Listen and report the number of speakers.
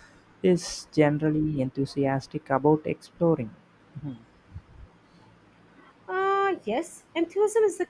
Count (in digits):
2